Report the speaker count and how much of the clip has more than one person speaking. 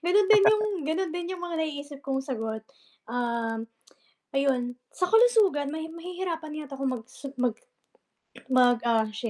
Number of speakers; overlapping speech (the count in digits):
1, no overlap